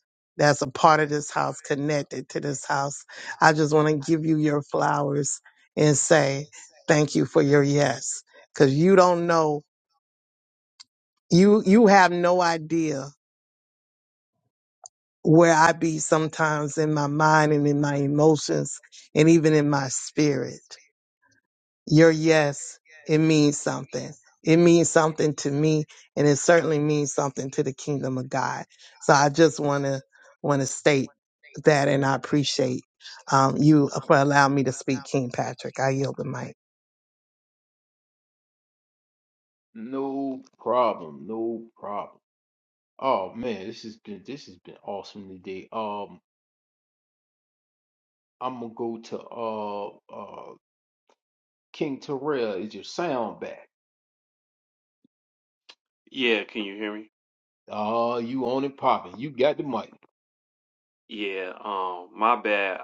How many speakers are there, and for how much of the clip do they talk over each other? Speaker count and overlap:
three, no overlap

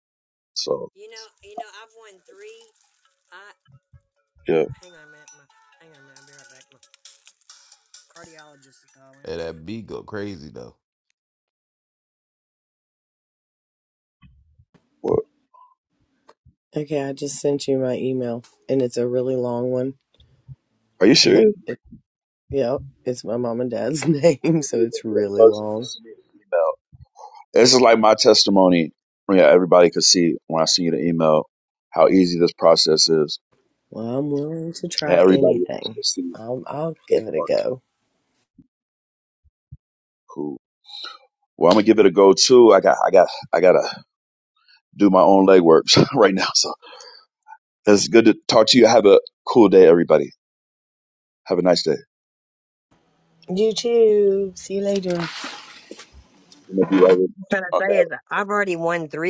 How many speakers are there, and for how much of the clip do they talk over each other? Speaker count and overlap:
four, about 4%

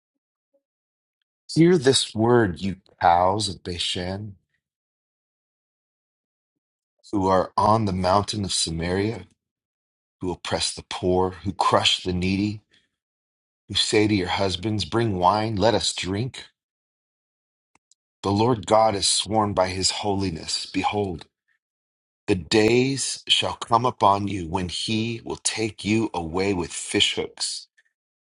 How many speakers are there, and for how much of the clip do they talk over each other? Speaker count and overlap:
one, no overlap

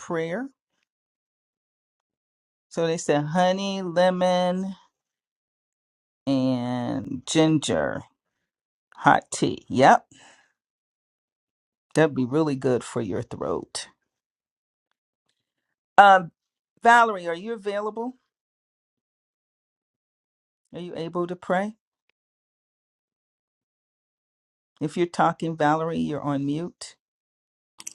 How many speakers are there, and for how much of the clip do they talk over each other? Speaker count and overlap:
one, no overlap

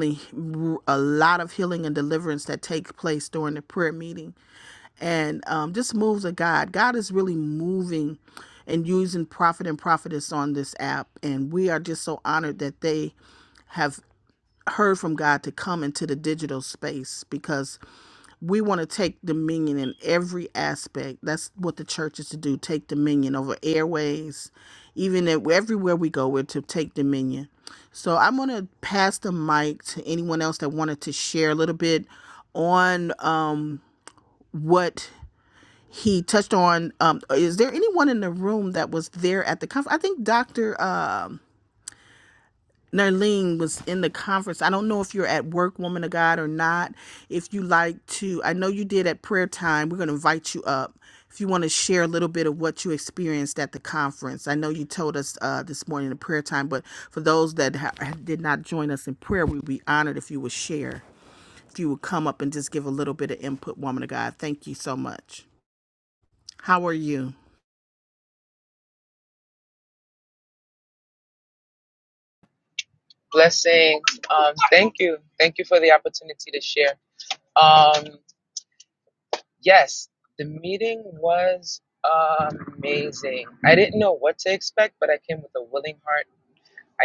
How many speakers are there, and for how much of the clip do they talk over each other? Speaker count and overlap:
two, no overlap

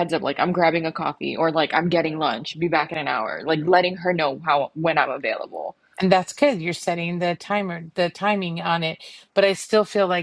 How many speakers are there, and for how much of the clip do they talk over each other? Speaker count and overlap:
two, no overlap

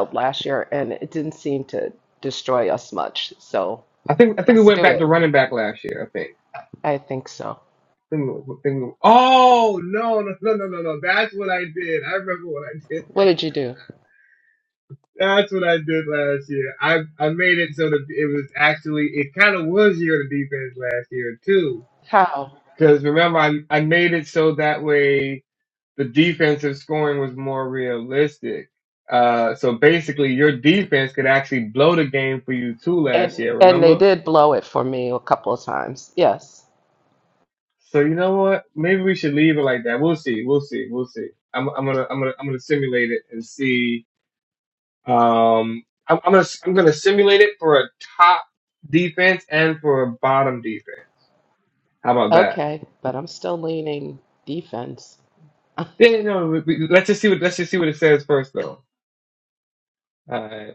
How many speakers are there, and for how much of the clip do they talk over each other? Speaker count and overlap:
two, about 3%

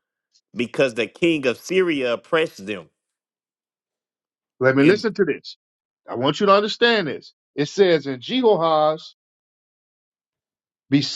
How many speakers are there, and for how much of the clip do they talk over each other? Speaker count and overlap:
two, about 2%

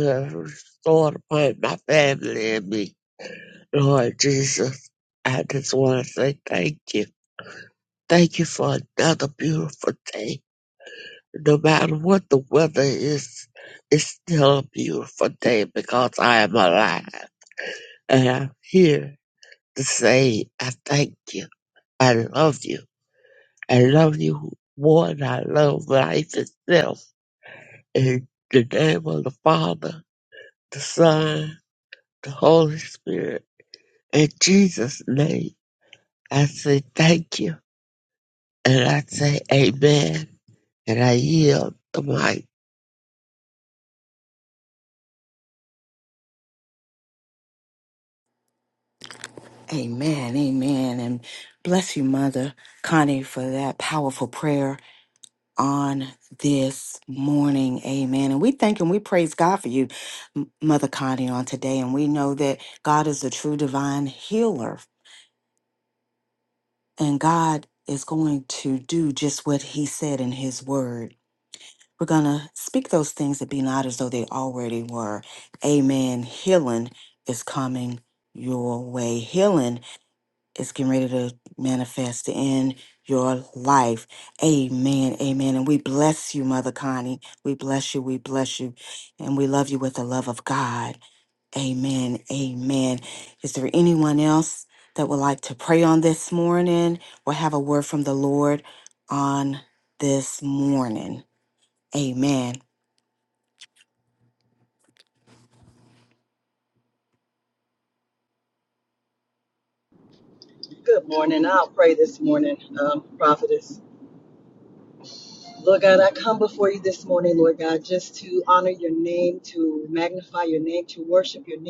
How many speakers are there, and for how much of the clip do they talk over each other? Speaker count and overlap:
three, no overlap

